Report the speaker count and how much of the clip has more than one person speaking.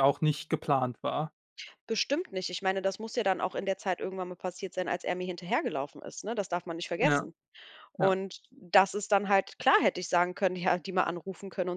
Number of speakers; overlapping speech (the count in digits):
2, about 3%